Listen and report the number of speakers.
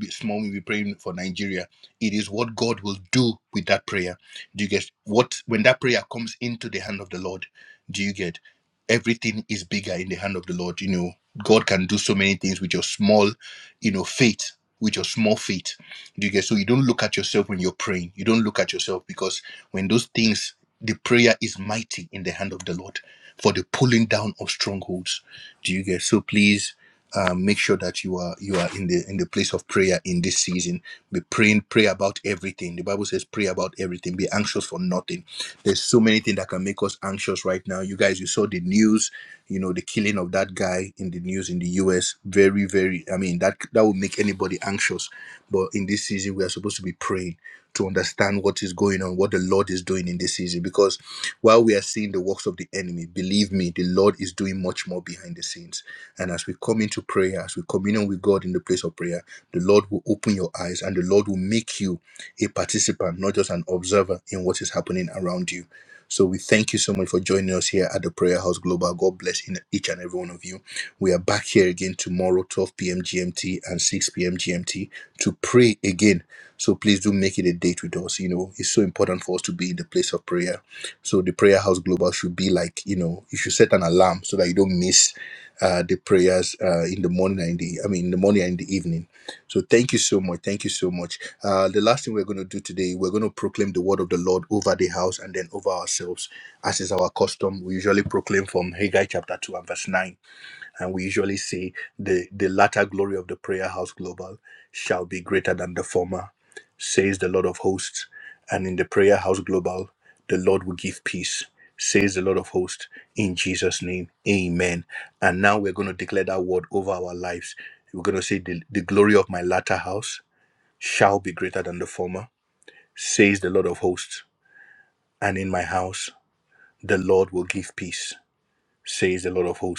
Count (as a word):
one